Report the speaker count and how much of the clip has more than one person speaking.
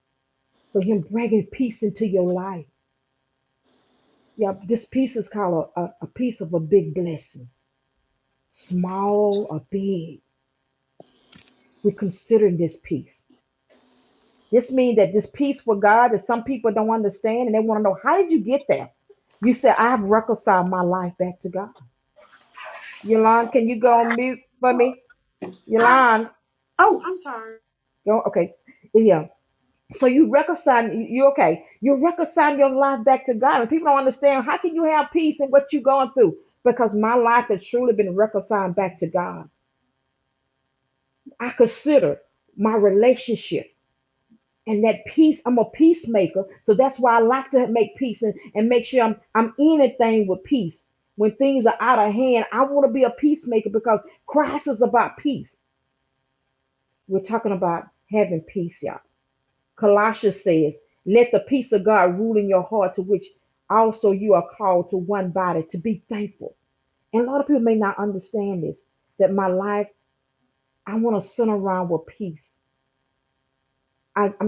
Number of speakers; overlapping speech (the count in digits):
2, under 1%